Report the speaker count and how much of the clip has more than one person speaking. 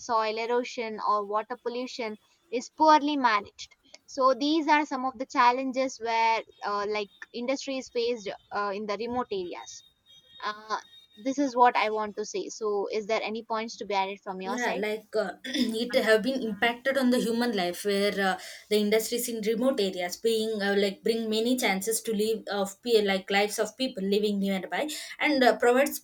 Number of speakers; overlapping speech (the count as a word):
two, about 1%